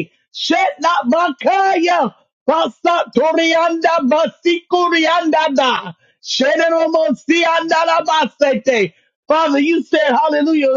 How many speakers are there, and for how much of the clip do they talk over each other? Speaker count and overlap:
one, no overlap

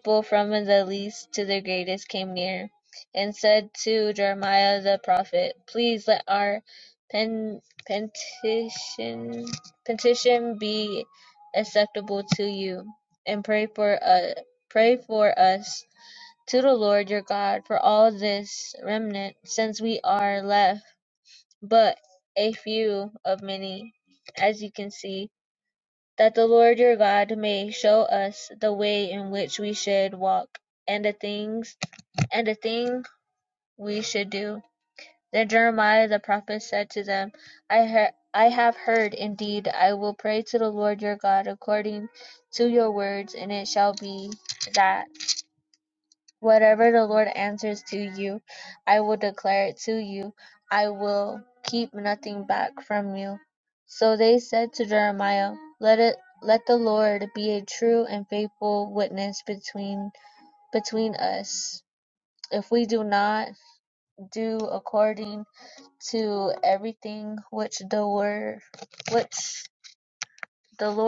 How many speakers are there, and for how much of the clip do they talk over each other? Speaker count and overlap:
one, no overlap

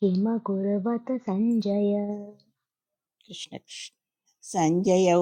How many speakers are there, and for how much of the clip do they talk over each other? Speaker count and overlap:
two, no overlap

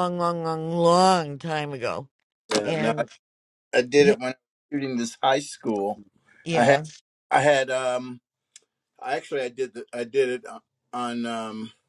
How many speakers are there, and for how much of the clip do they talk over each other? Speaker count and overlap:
two, about 6%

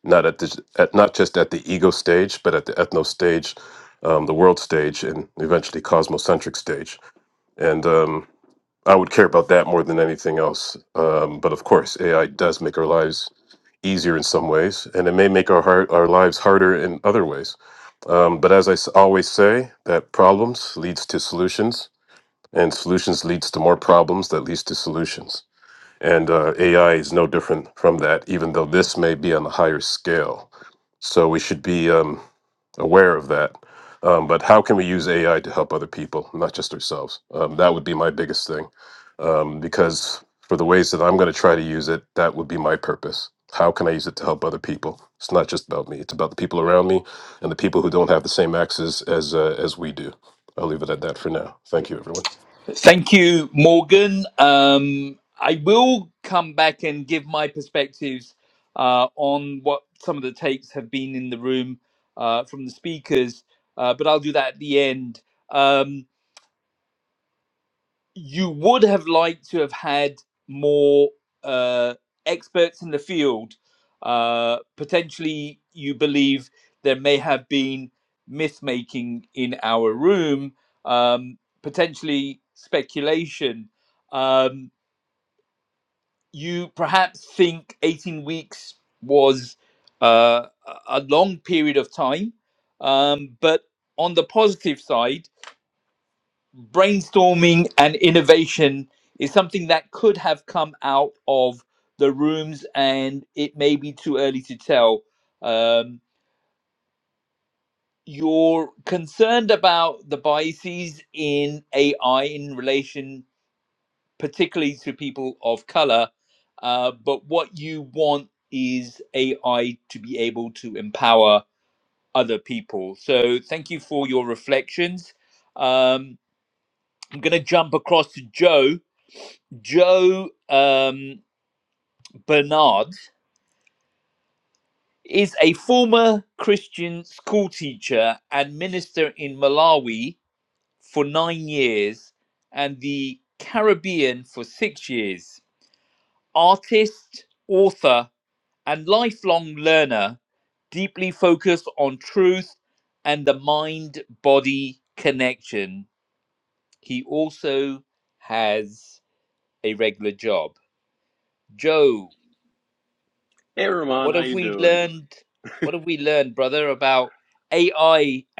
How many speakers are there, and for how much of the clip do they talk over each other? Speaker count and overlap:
three, under 1%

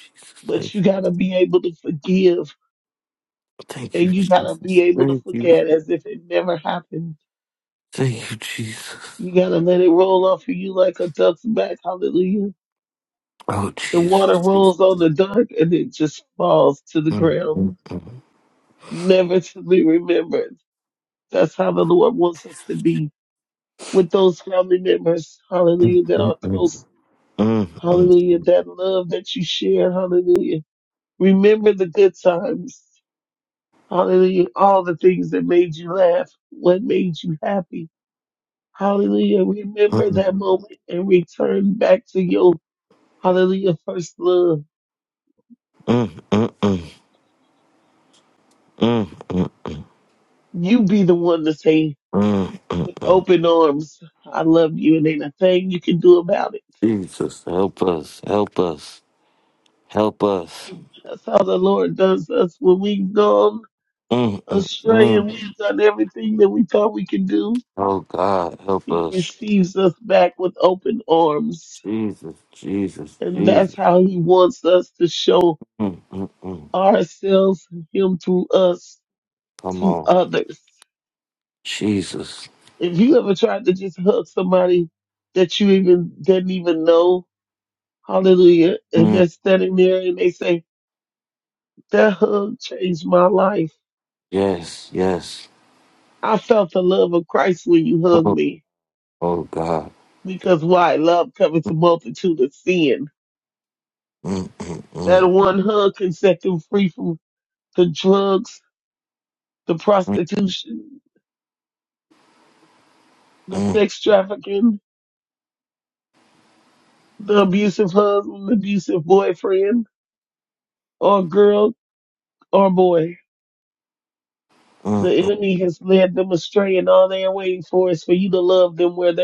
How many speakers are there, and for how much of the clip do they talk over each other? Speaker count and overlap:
two, about 6%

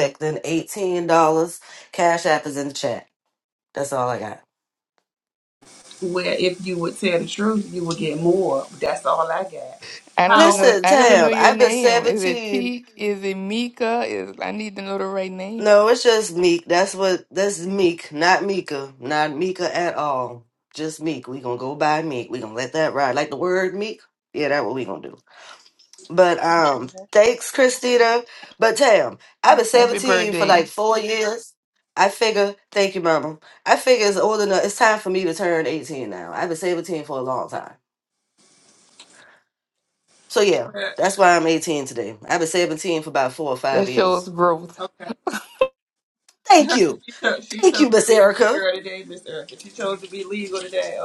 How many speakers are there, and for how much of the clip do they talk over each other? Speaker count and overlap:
three, about 9%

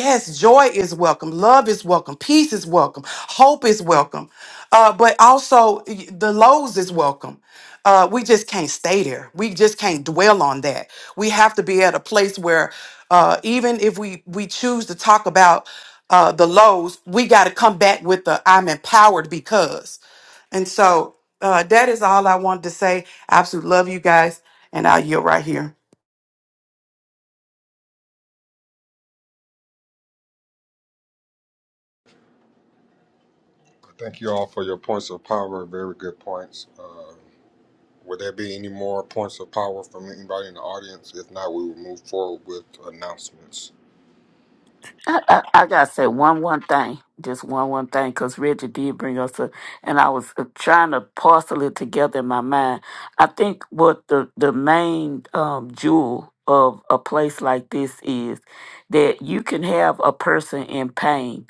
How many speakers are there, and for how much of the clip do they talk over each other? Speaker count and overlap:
three, no overlap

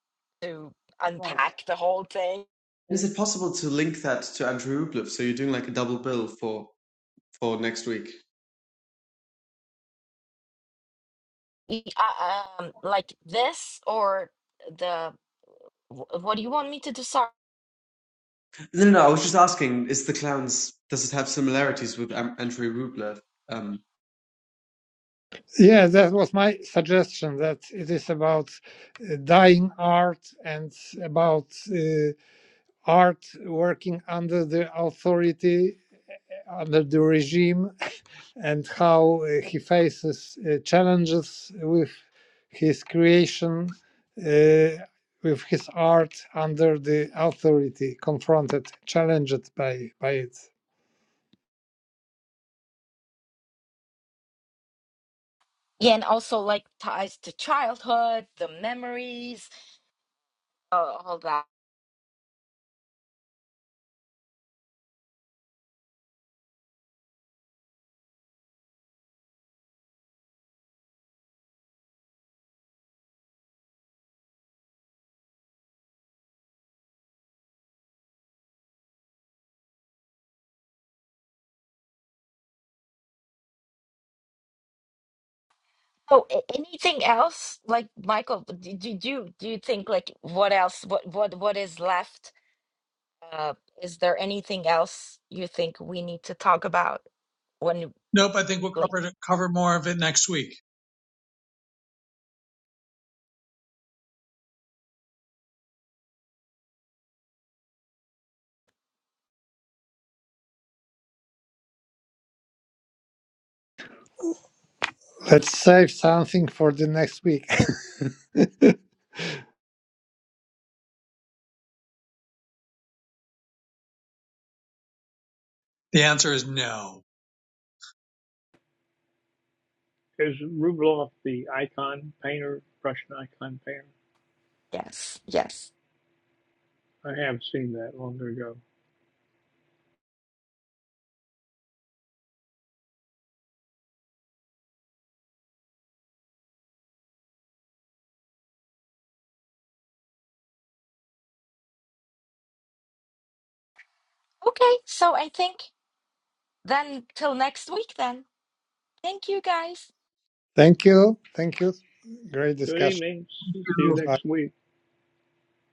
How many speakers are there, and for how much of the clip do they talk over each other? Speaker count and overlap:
five, about 1%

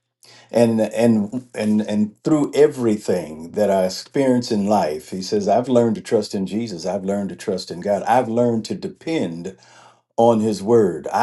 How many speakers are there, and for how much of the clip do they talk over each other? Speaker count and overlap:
one, no overlap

